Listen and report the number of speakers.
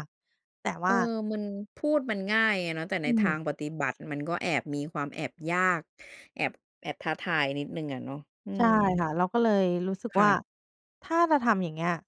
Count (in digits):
2